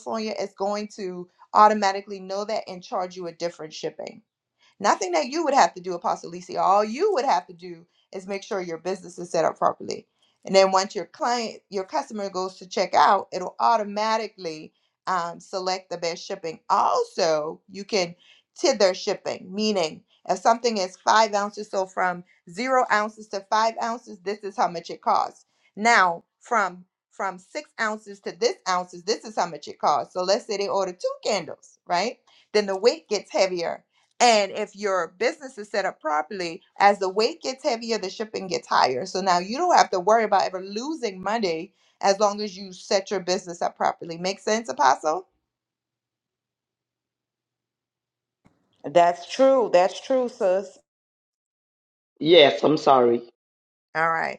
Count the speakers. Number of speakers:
three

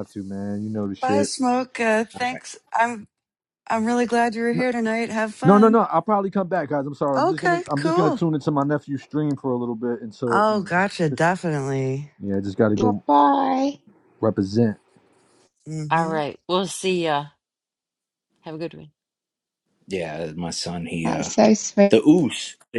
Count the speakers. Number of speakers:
five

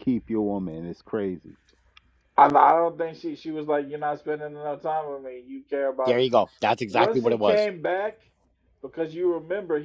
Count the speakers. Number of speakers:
three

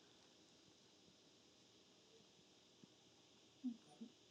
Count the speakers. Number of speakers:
zero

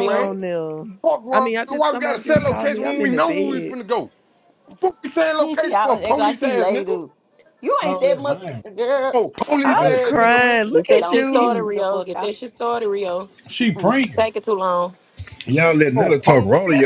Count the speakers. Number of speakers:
five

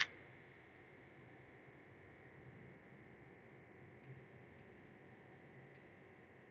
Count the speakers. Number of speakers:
zero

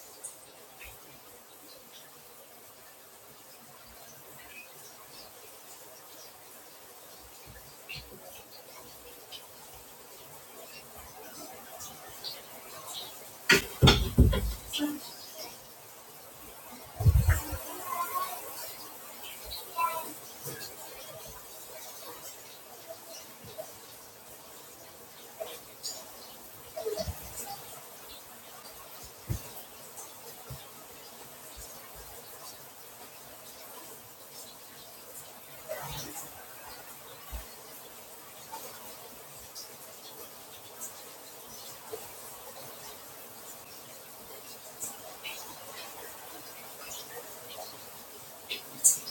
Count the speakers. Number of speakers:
zero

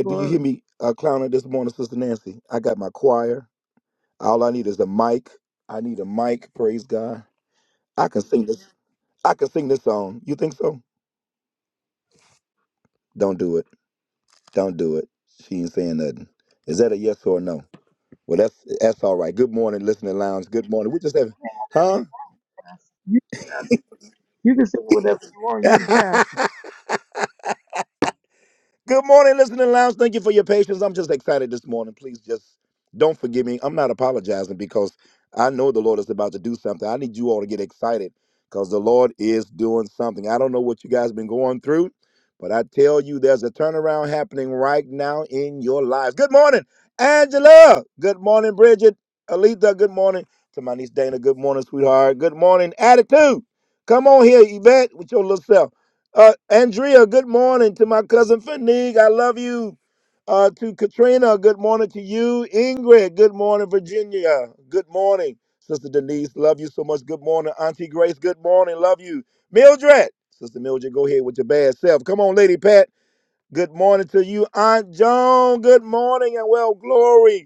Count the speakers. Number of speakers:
two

